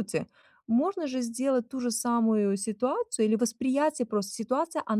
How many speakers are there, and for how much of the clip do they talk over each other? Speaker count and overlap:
1, no overlap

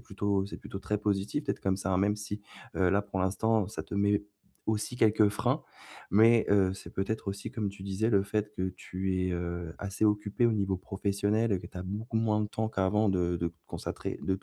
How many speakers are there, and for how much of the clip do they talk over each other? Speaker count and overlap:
1, no overlap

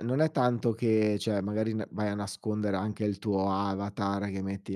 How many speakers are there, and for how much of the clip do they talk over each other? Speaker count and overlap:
1, no overlap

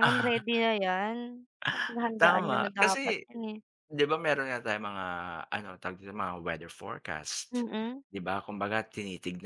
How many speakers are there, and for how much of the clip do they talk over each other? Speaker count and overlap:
2, about 12%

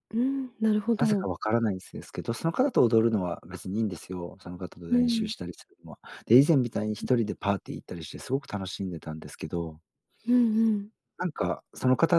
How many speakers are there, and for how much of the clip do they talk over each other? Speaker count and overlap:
2, about 5%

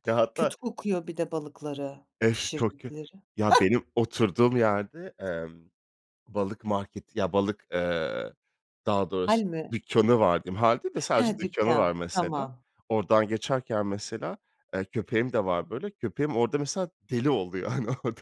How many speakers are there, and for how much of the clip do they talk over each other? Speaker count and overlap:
2, about 12%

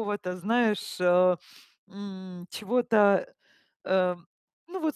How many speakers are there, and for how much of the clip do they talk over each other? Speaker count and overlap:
1, no overlap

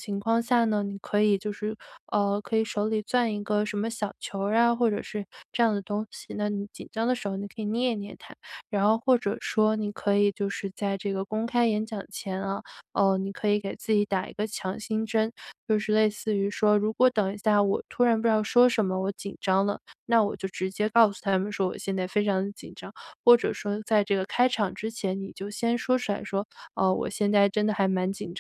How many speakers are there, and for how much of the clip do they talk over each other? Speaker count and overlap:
1, no overlap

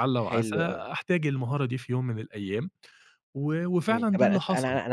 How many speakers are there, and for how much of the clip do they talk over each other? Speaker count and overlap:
2, about 31%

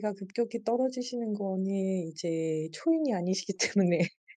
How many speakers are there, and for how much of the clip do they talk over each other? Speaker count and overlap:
1, no overlap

